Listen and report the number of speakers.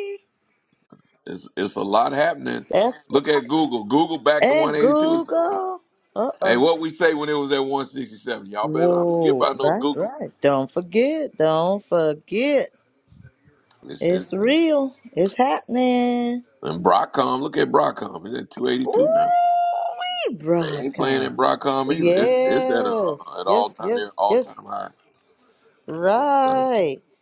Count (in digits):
2